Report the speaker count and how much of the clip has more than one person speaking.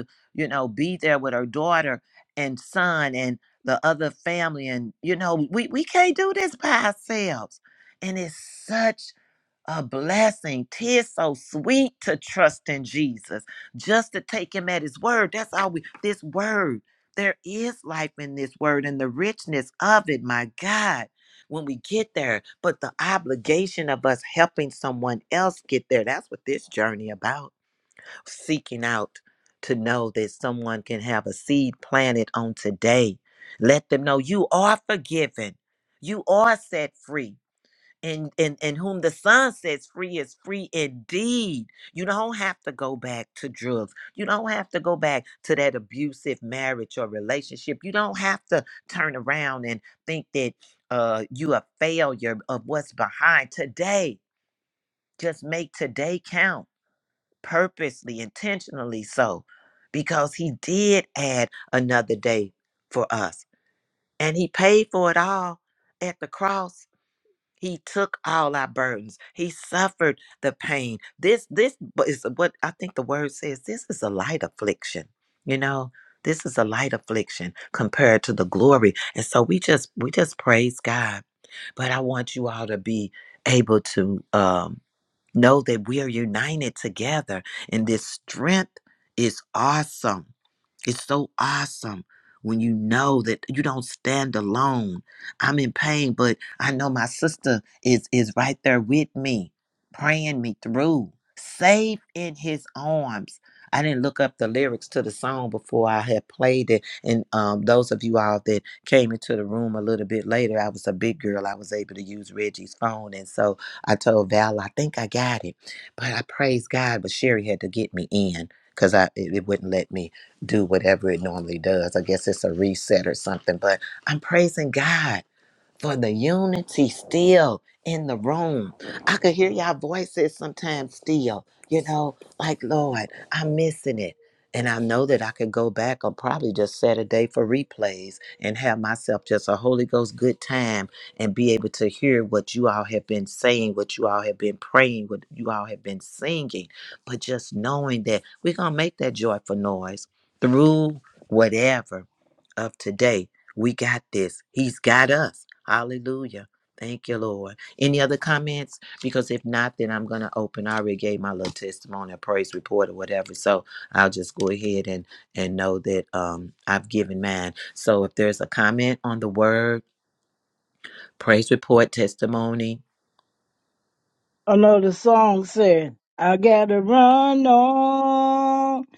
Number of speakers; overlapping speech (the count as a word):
two, no overlap